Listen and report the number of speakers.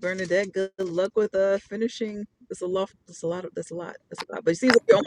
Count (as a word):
one